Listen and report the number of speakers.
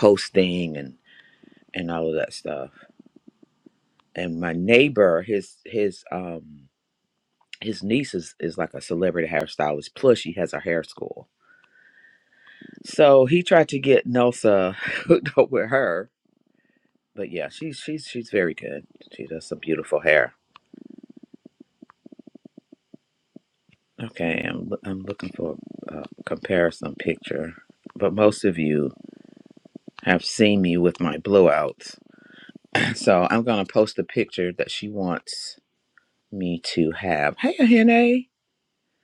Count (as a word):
one